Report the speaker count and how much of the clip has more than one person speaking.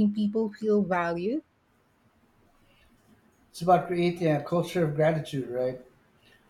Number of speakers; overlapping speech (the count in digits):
2, no overlap